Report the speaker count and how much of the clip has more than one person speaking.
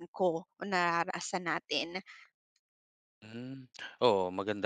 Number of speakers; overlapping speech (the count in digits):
2, no overlap